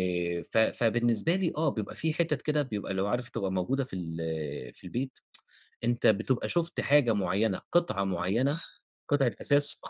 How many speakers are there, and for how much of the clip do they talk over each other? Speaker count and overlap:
one, no overlap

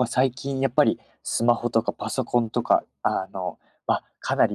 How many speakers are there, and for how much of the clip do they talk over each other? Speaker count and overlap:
one, no overlap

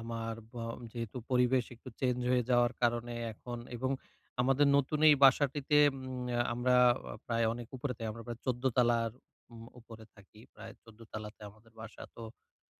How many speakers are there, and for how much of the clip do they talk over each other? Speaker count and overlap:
one, no overlap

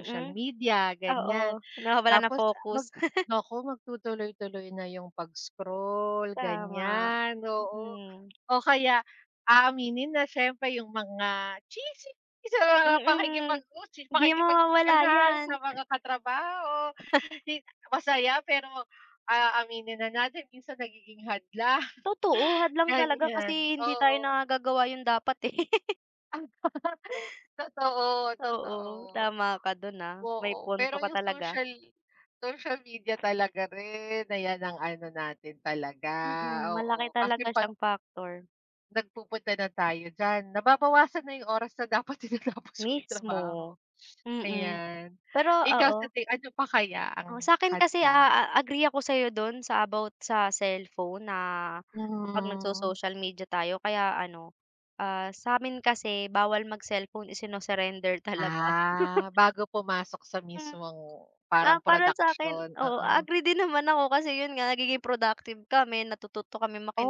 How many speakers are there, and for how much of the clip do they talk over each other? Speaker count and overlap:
two, about 21%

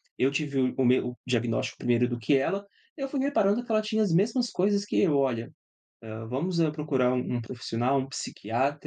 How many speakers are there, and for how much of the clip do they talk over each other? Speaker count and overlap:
one, no overlap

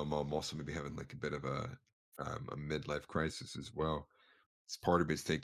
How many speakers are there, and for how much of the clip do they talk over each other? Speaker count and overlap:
one, no overlap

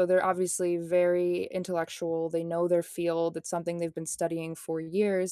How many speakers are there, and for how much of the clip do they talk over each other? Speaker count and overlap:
one, no overlap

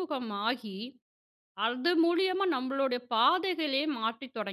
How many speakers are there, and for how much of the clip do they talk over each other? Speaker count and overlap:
one, no overlap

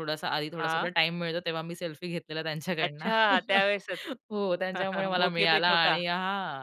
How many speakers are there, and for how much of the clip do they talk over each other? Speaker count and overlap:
two, about 23%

